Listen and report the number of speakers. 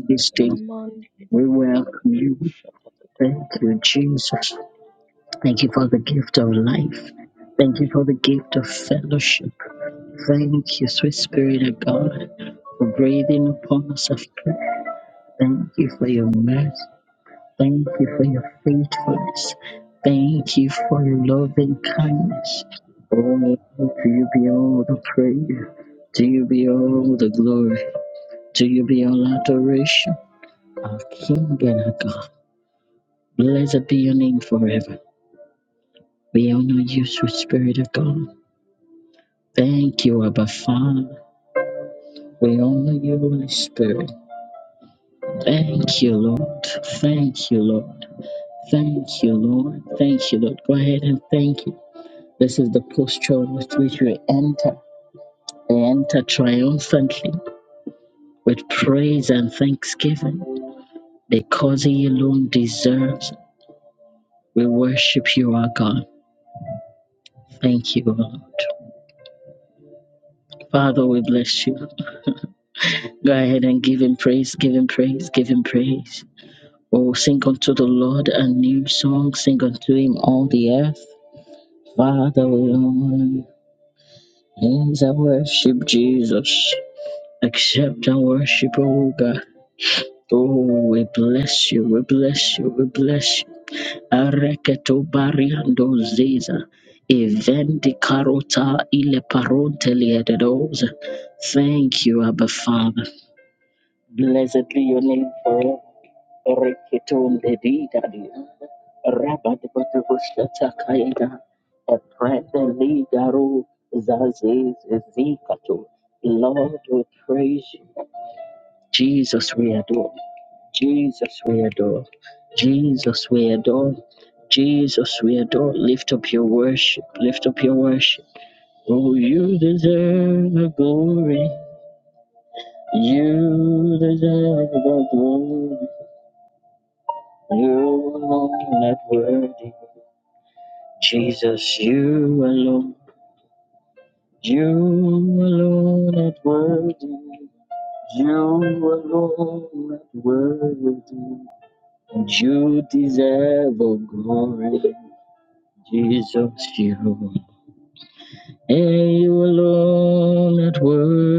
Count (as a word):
two